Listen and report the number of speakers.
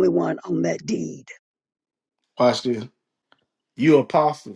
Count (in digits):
2